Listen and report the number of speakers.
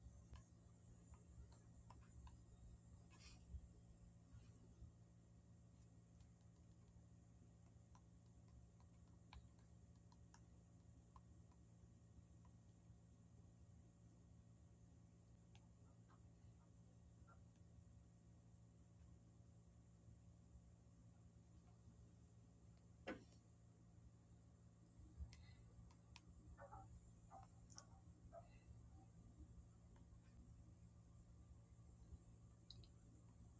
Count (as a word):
zero